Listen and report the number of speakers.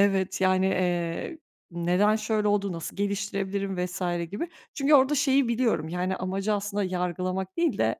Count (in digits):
1